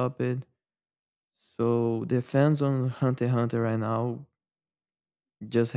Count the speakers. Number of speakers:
one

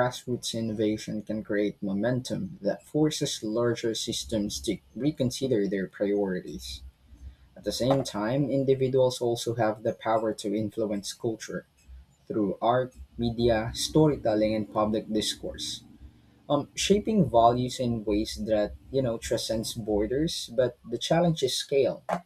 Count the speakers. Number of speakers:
one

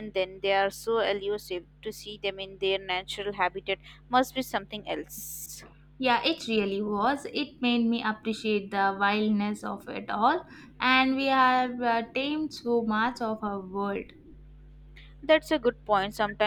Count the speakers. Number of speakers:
two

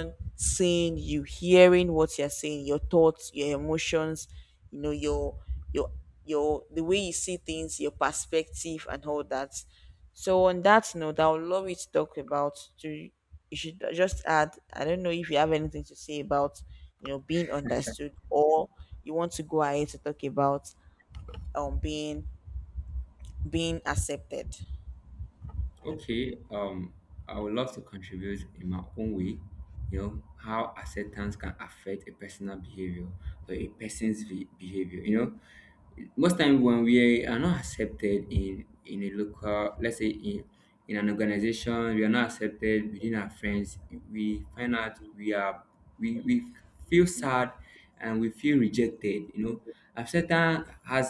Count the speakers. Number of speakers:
two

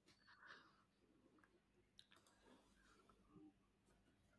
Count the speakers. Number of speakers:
zero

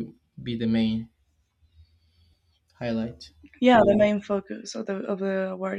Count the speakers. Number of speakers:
two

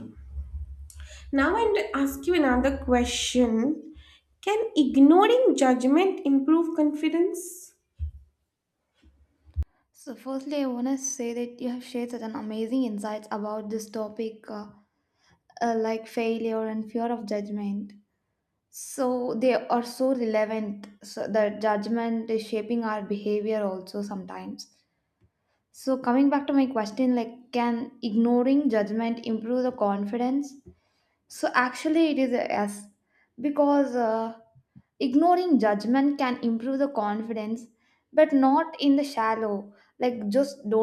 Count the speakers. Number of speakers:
two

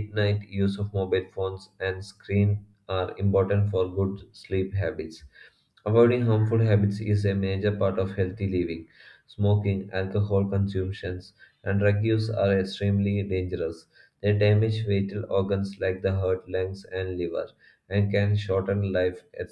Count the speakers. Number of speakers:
one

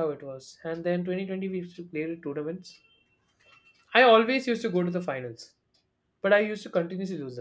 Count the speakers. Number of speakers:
one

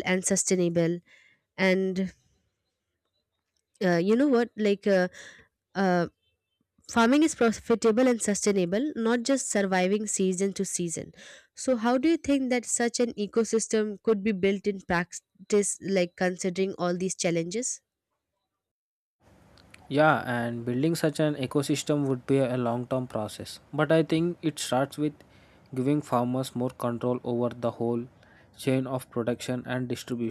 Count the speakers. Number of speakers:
two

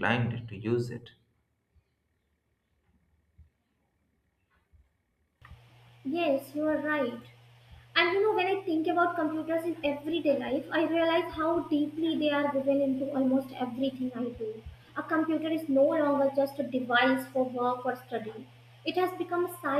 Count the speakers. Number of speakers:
two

